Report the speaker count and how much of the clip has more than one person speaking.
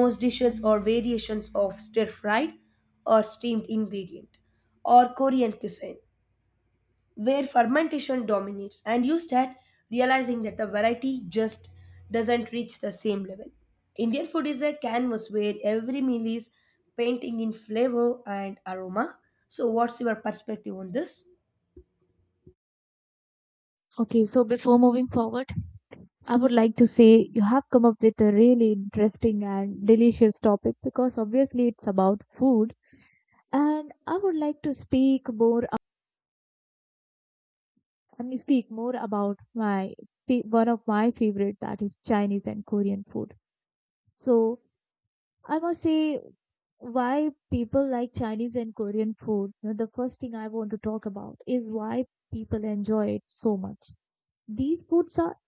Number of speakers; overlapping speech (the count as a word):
two, no overlap